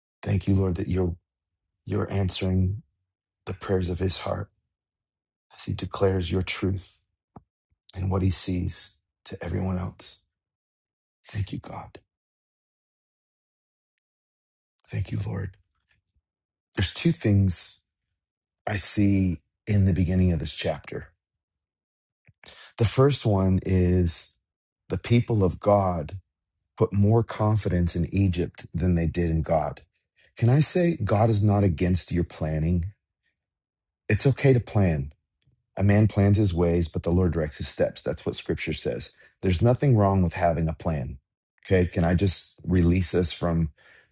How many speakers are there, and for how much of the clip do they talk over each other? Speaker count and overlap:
1, no overlap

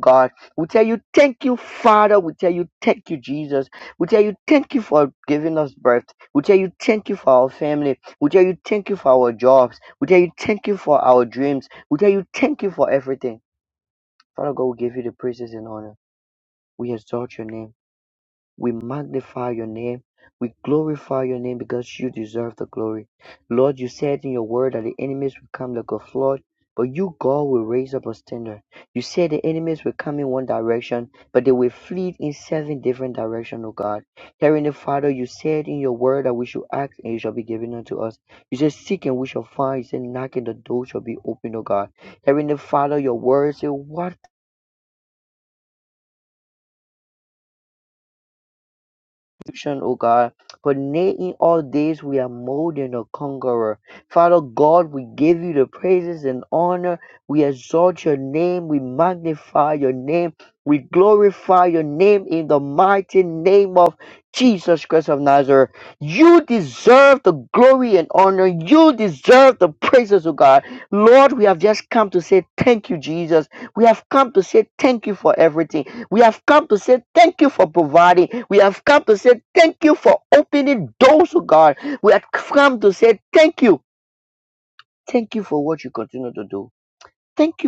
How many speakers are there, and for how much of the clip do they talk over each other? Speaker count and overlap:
1, no overlap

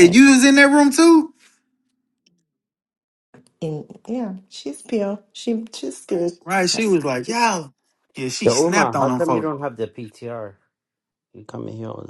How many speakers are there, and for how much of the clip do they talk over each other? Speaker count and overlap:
3, about 12%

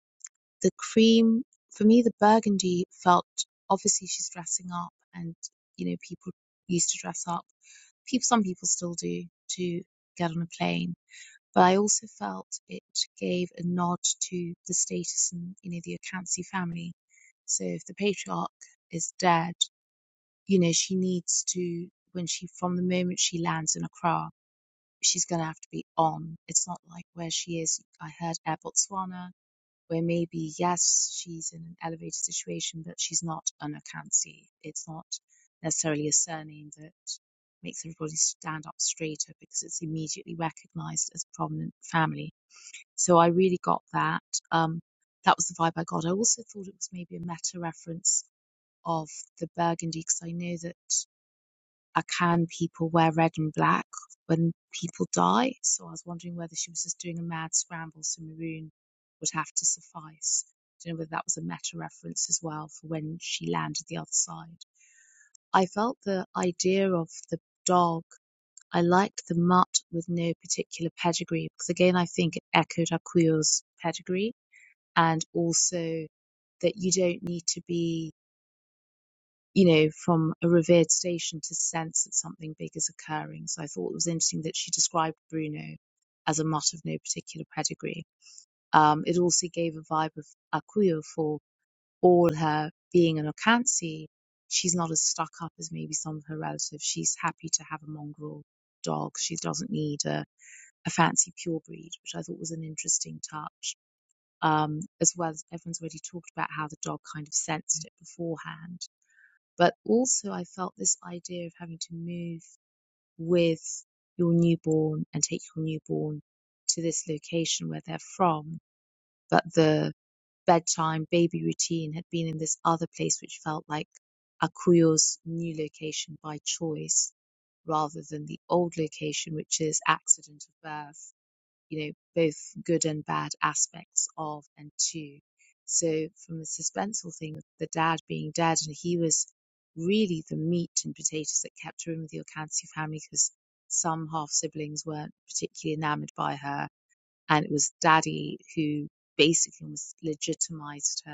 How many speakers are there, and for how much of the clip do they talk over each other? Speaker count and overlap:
1, no overlap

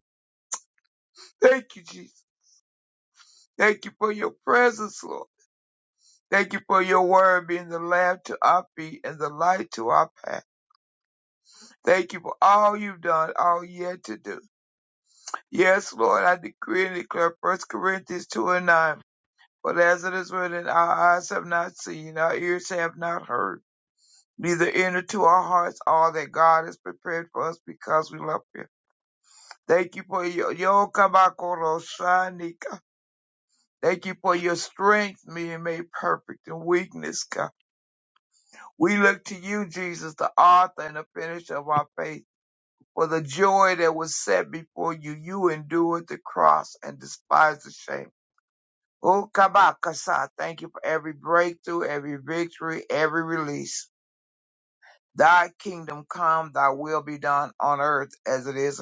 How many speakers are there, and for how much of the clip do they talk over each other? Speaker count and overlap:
1, no overlap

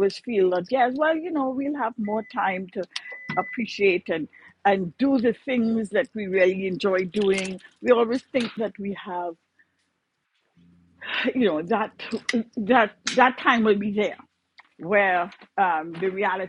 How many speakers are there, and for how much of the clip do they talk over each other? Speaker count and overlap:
1, no overlap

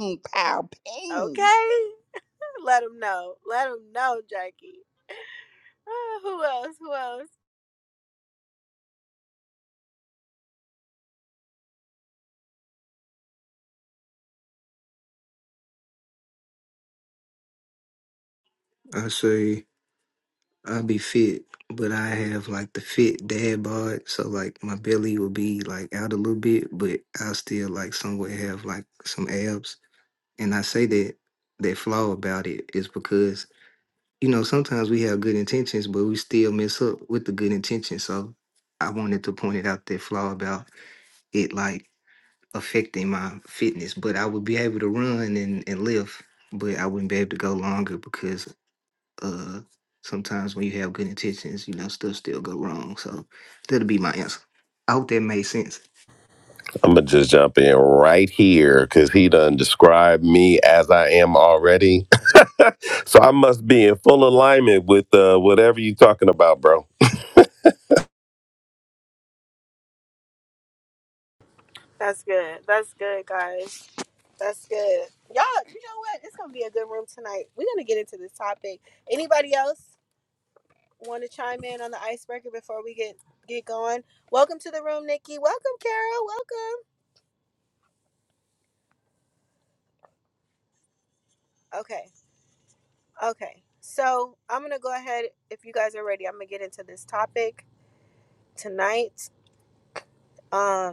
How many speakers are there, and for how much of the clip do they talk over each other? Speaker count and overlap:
4, under 1%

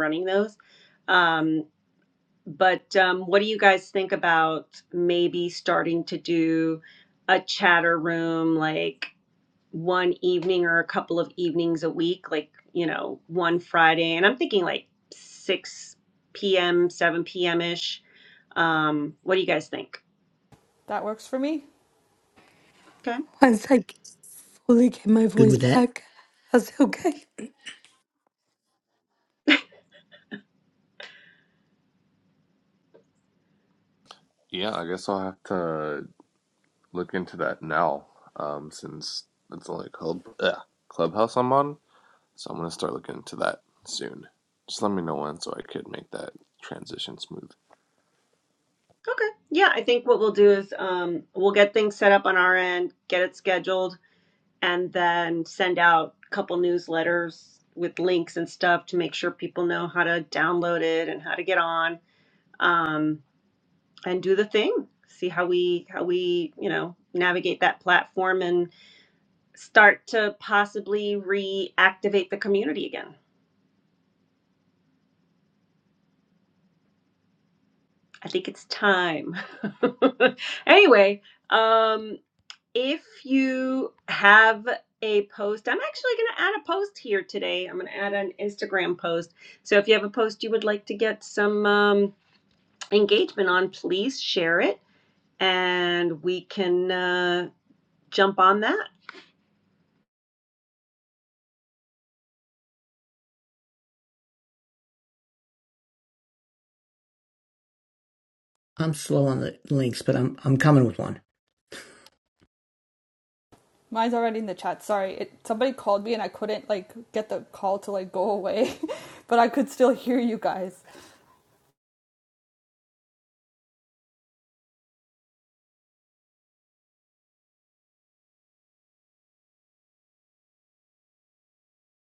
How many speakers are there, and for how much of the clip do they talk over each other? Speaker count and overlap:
5, under 1%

